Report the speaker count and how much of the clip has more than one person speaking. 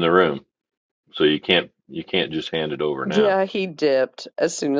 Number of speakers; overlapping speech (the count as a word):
two, about 6%